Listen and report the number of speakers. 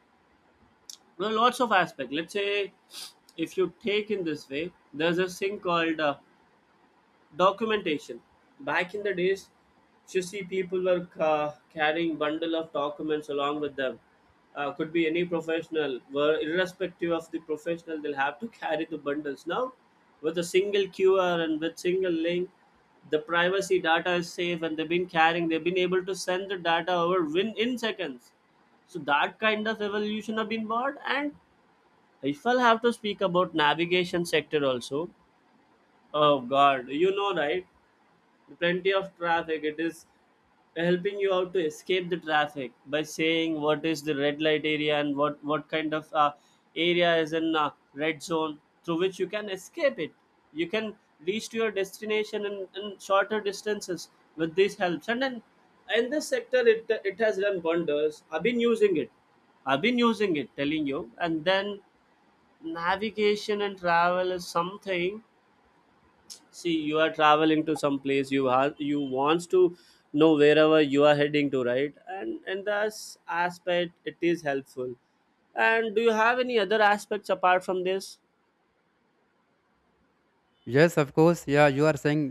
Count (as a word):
two